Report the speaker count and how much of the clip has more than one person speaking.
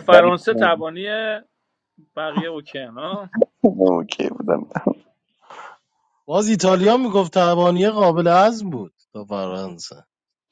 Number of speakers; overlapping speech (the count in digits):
3, about 7%